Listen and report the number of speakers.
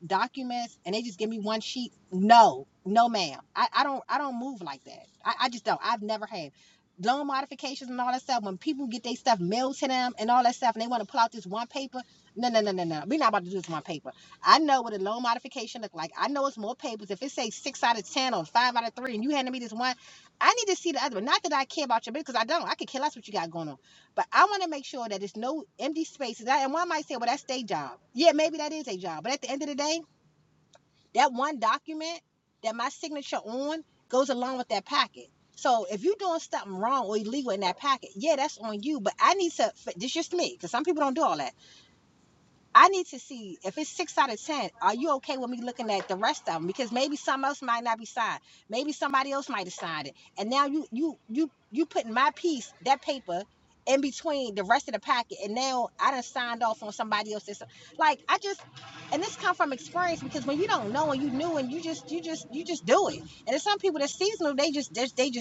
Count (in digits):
1